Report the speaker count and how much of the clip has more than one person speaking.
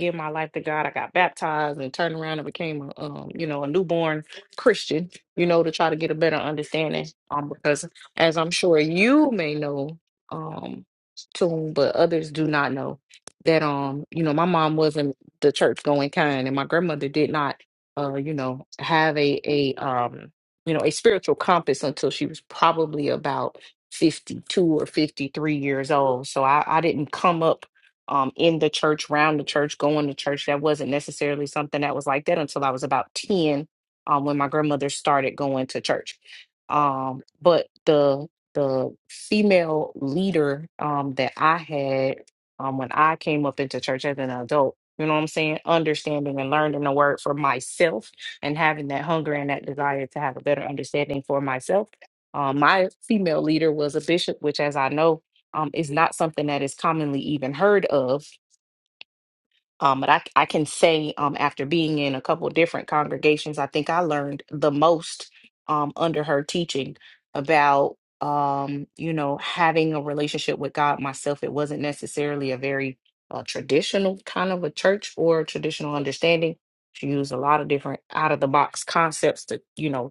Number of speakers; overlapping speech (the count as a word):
one, no overlap